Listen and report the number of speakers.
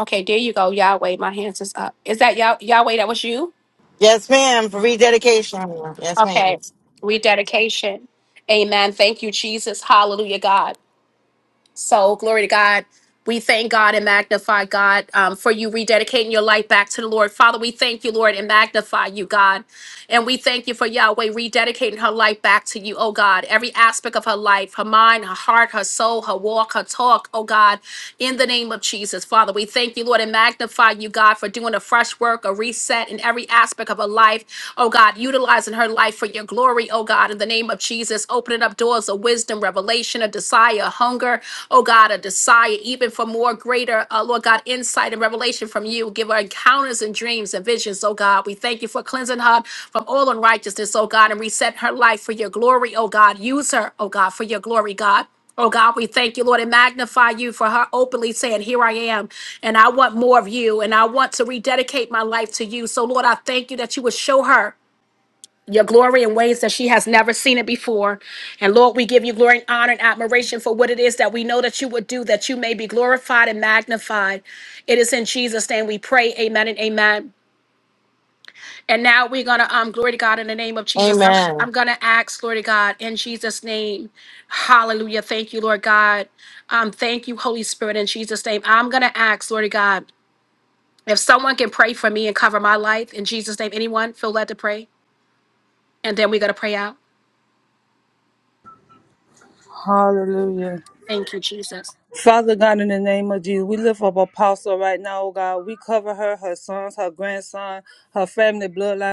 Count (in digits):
3